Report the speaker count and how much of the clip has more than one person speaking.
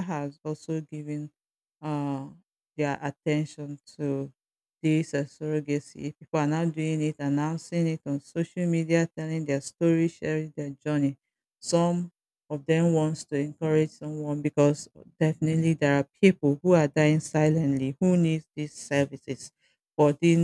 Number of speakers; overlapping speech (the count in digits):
1, no overlap